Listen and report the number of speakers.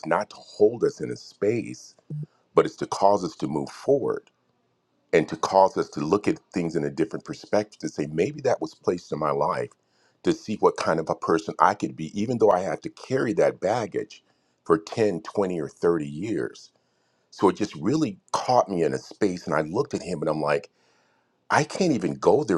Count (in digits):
1